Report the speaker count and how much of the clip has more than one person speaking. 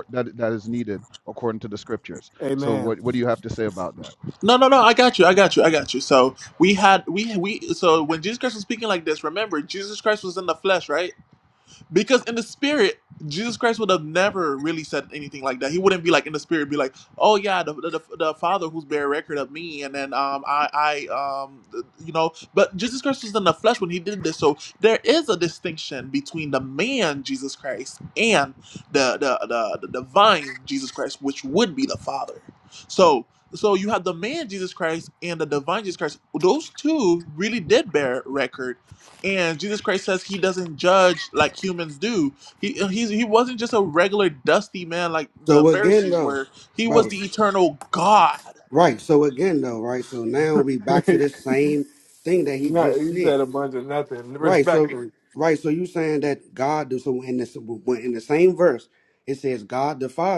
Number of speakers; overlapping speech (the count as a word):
four, about 6%